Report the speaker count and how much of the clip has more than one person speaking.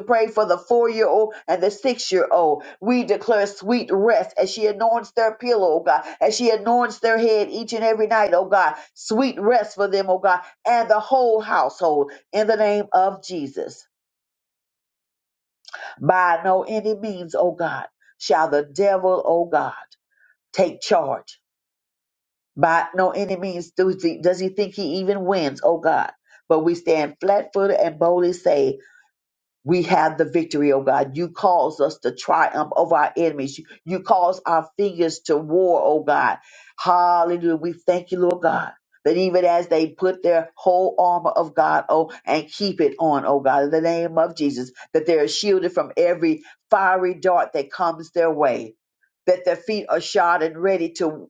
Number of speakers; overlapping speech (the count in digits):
1, no overlap